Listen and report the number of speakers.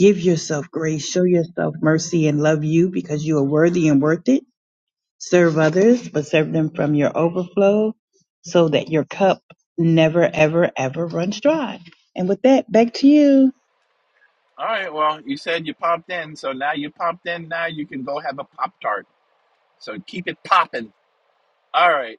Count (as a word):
two